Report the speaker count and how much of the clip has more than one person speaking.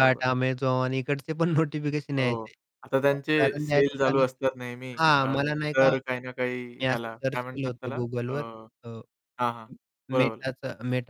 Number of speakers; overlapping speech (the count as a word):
two, about 39%